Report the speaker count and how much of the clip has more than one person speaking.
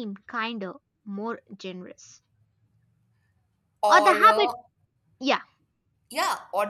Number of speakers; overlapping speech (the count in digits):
2, about 10%